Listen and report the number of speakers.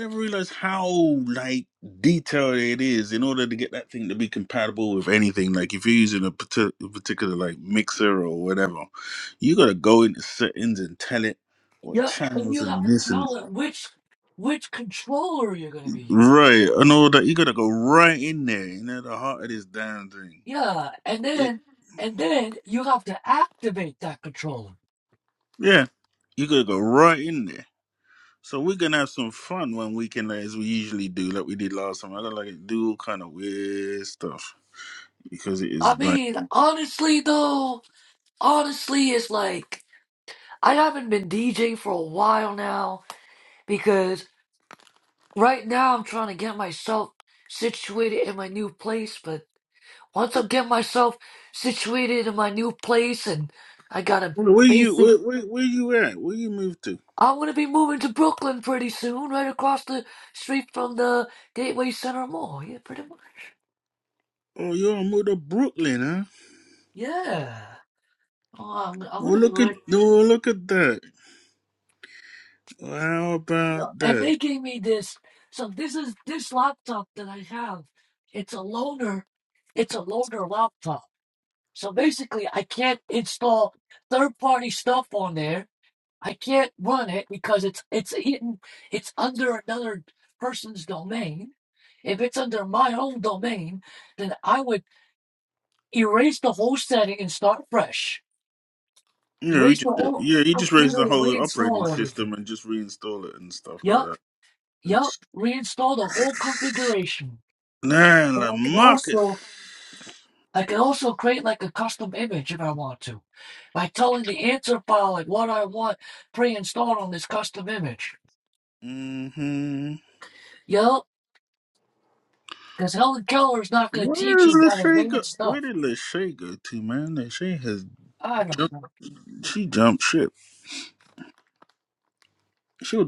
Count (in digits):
2